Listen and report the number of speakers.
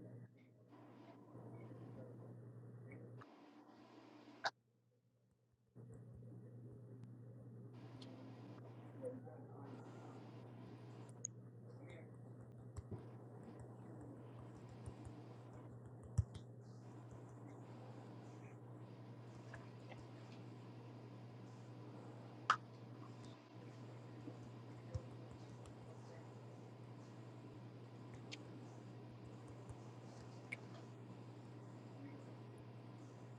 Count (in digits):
0